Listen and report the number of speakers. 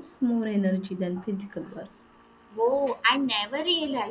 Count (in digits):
2